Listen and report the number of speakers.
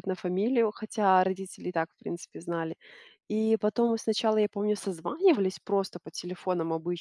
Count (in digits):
1